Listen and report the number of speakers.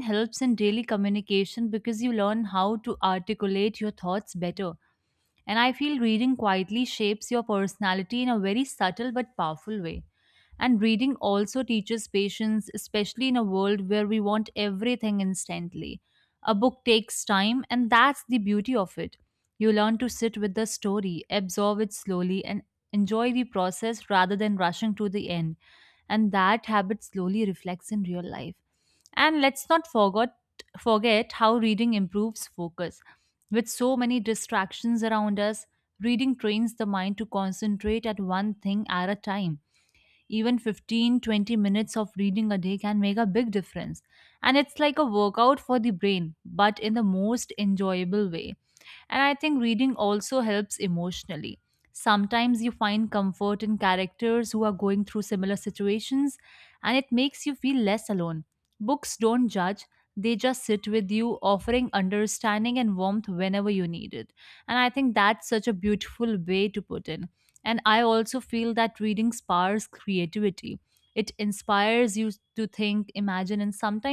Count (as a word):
one